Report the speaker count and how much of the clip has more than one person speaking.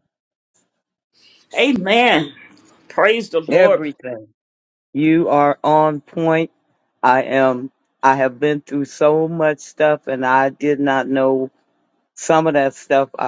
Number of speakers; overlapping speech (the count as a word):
two, about 3%